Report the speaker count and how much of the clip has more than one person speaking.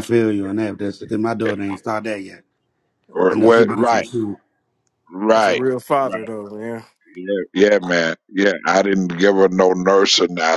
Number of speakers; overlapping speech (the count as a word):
three, about 9%